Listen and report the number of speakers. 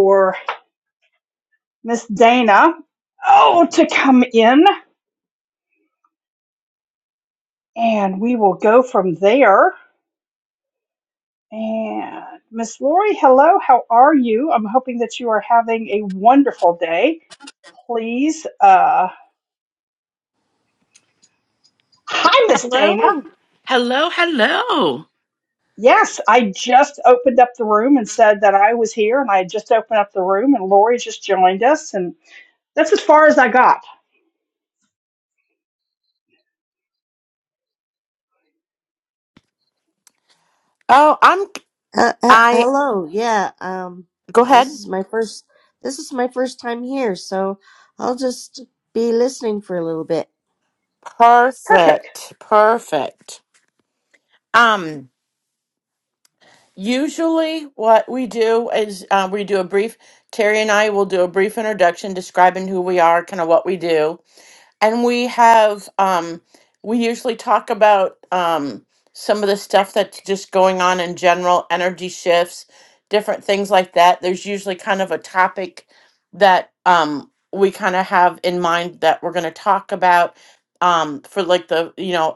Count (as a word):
three